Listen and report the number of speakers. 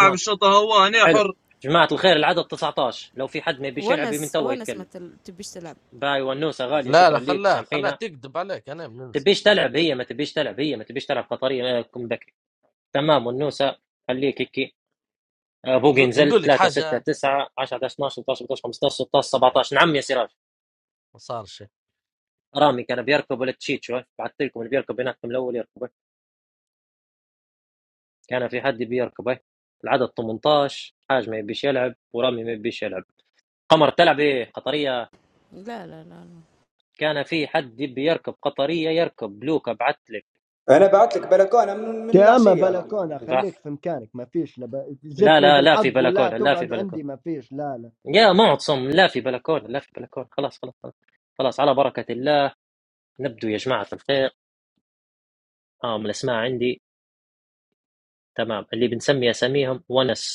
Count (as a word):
six